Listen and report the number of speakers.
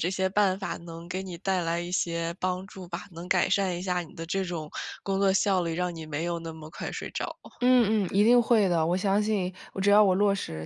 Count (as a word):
two